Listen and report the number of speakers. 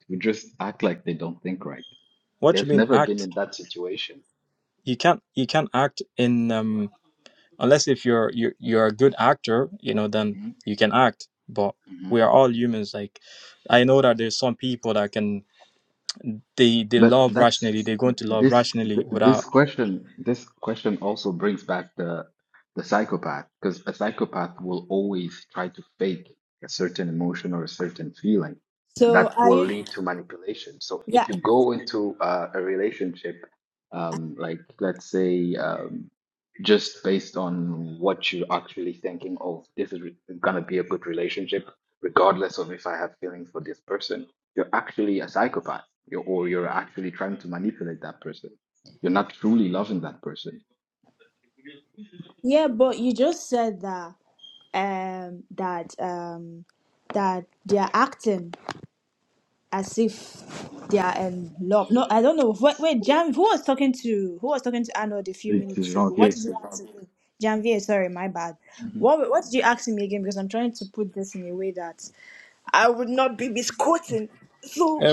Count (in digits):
3